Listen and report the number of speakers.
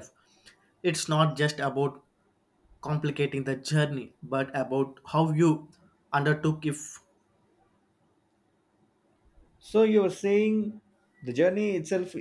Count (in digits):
2